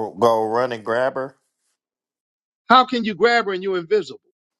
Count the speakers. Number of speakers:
two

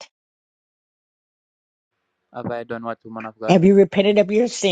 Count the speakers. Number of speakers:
two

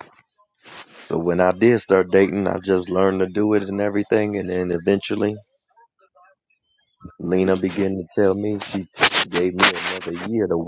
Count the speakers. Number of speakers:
one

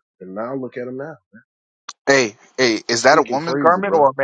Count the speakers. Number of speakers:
two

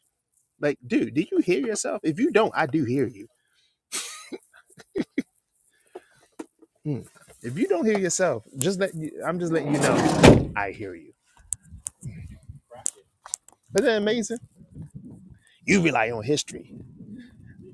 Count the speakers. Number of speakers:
one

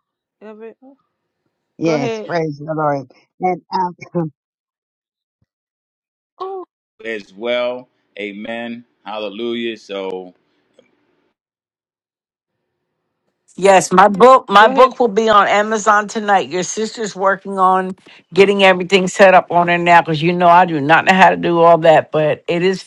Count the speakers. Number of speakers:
four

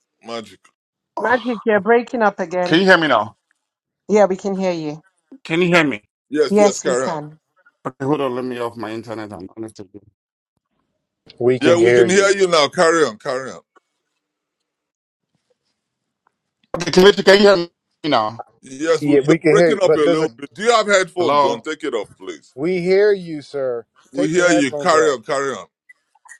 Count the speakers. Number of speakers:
four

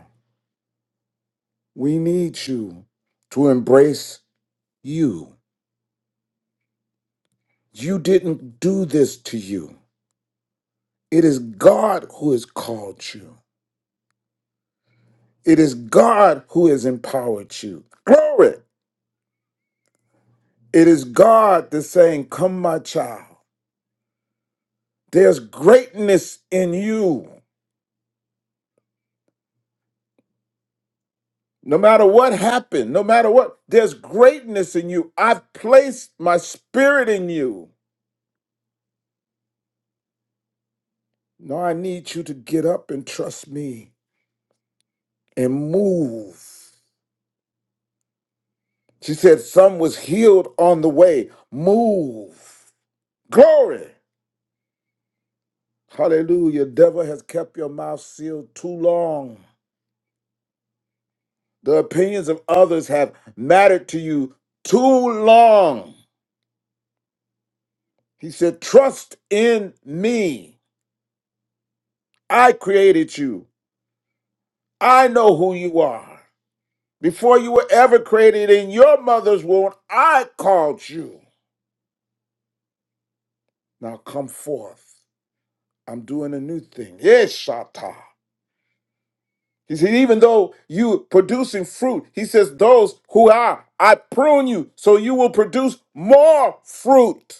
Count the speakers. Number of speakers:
one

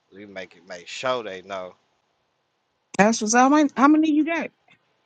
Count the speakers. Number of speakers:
two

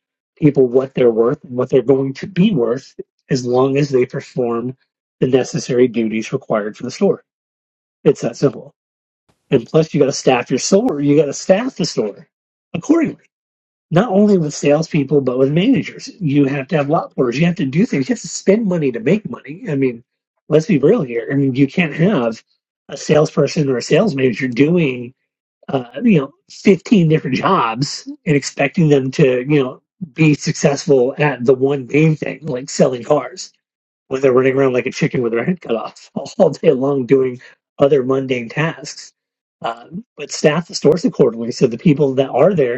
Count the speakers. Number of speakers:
one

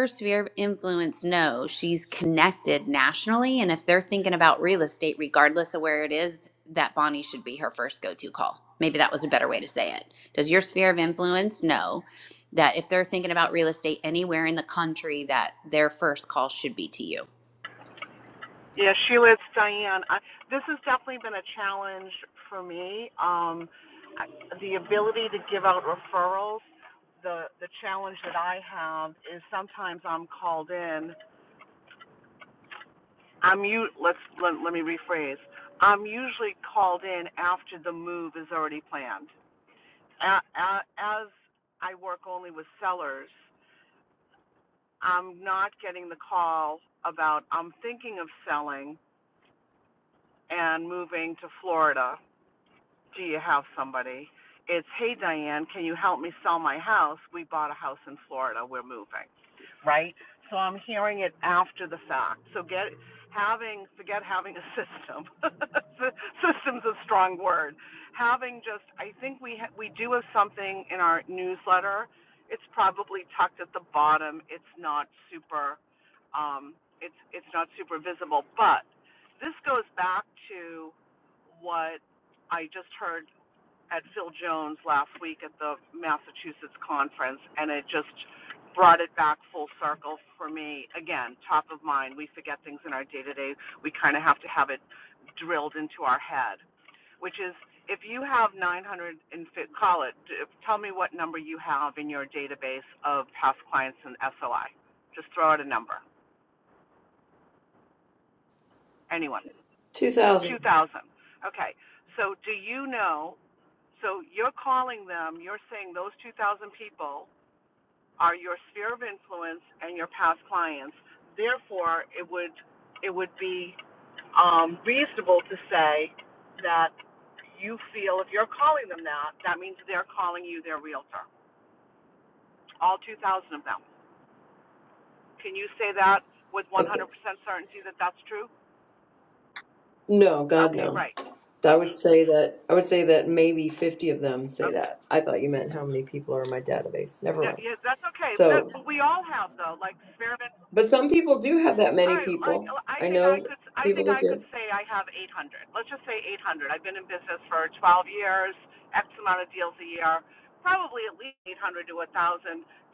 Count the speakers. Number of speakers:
three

